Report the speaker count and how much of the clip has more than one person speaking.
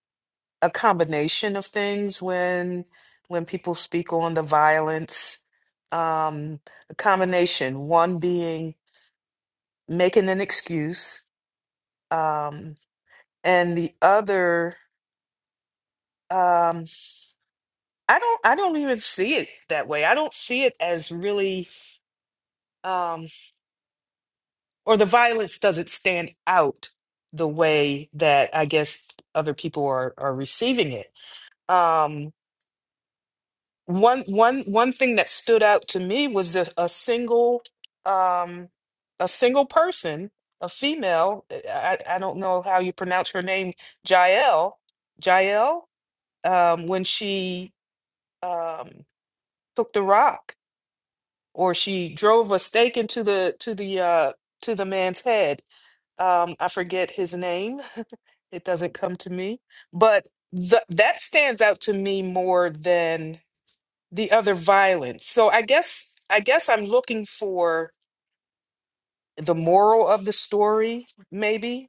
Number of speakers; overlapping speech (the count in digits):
1, no overlap